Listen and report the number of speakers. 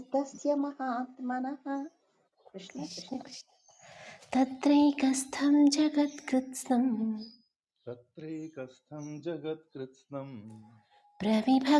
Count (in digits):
3